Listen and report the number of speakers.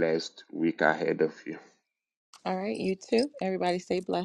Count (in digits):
2